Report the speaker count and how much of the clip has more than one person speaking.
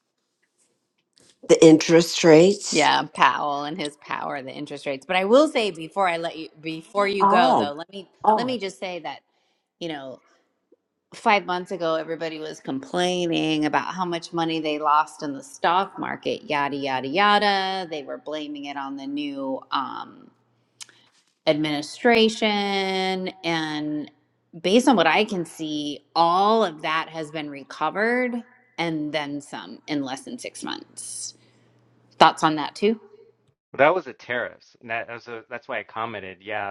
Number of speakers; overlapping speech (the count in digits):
3, about 2%